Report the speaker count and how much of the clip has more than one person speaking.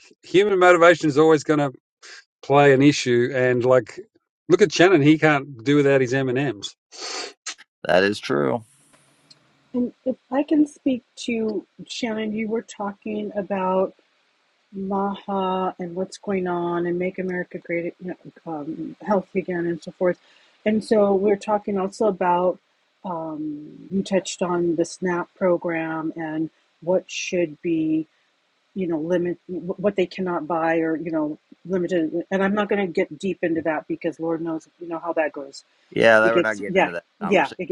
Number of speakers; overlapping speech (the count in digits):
3, about 4%